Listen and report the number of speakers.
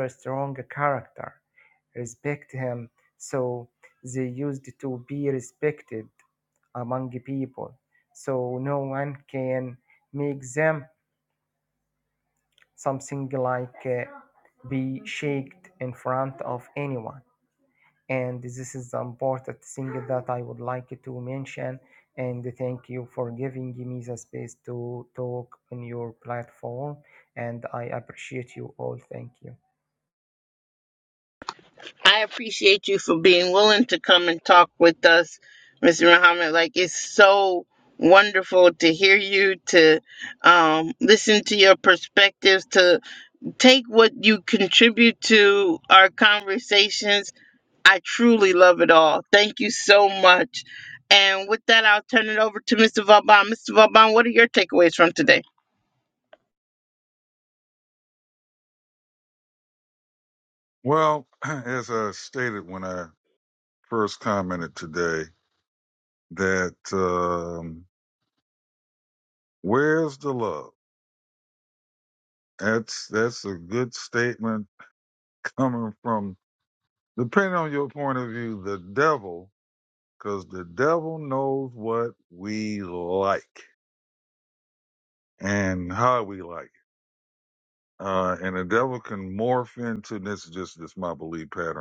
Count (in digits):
3